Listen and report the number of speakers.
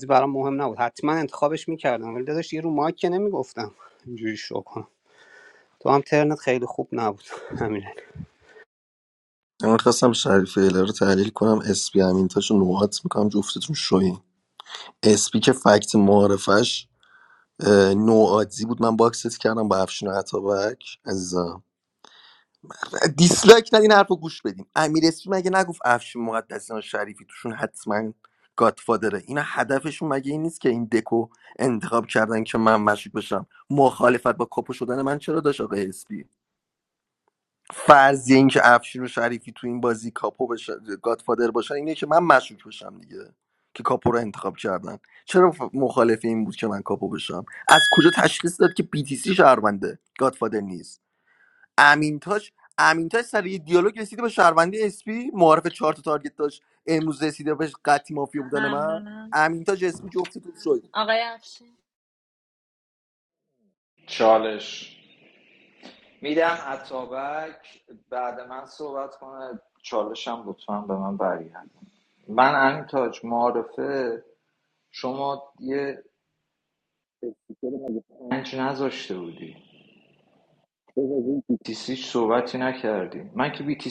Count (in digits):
4